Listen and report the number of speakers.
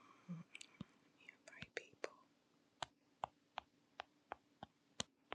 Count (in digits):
0